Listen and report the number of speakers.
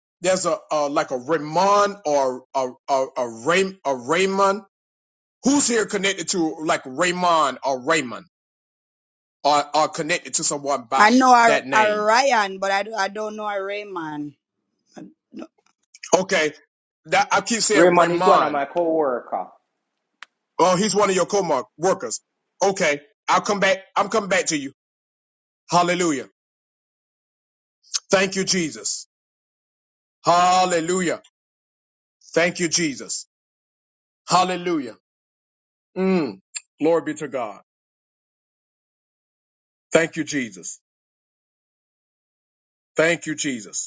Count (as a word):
three